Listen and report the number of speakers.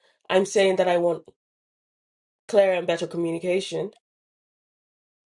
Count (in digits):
1